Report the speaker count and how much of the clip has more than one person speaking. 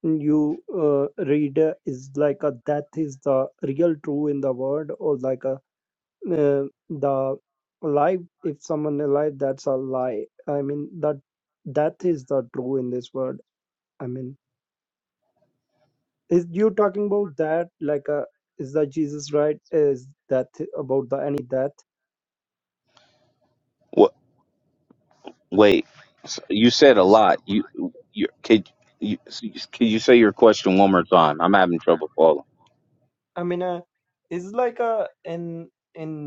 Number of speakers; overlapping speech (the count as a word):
two, no overlap